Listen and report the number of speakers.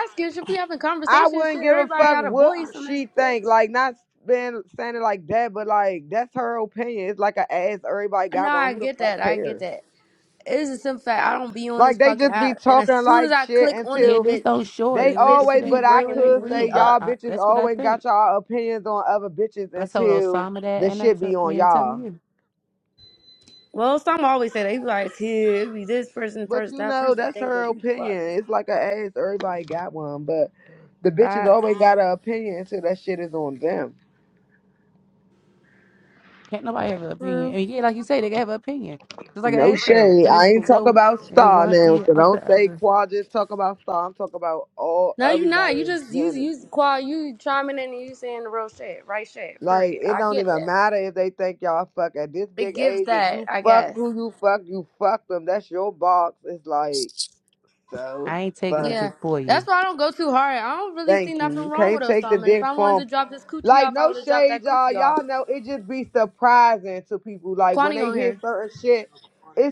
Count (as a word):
three